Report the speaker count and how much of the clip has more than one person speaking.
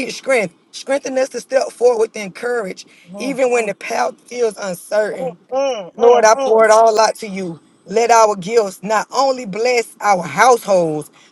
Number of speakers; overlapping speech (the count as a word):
two, about 7%